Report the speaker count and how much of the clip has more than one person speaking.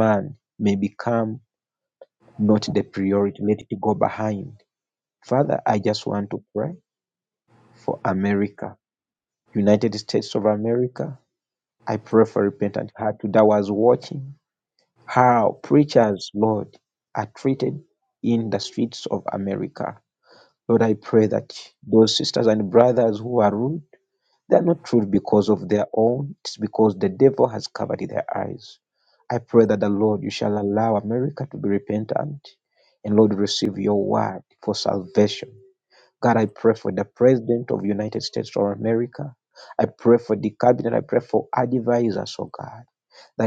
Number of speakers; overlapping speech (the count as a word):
one, no overlap